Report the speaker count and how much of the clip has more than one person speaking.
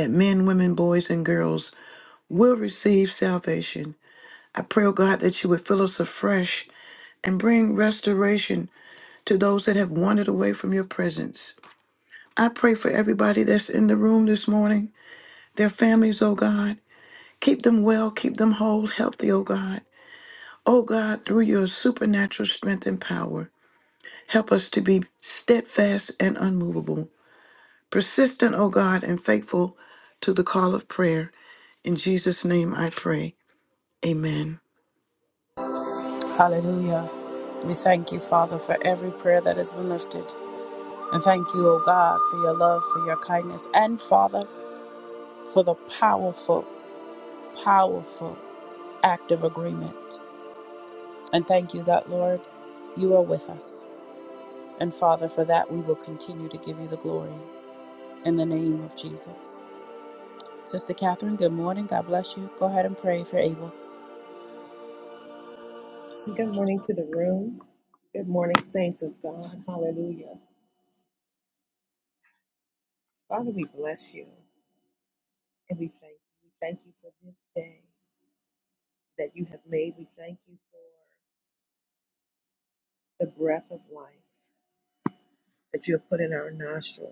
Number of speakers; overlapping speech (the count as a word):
three, no overlap